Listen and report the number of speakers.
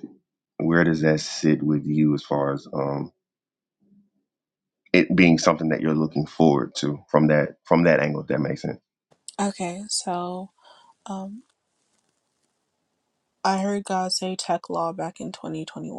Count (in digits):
2